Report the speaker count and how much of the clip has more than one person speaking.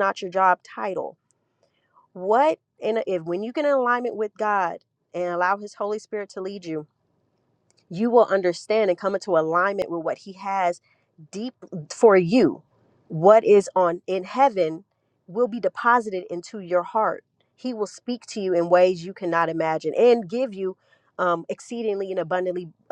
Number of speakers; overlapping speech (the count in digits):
1, no overlap